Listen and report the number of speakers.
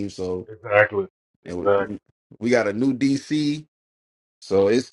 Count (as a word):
two